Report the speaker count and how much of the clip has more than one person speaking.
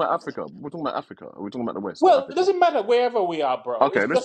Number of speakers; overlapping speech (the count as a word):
two, about 23%